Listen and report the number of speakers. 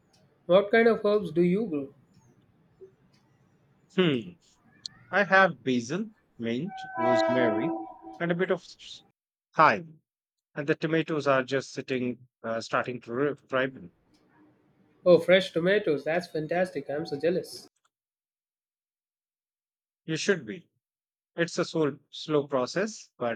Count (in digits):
2